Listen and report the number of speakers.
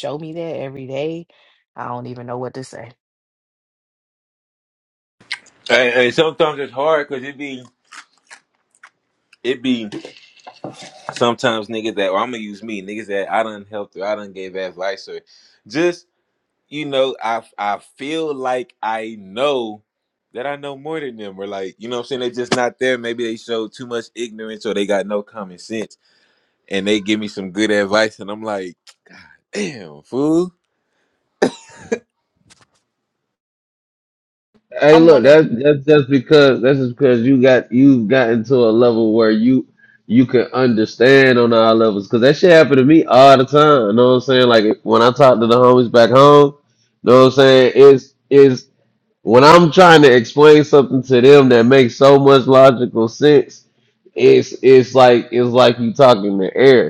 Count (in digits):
3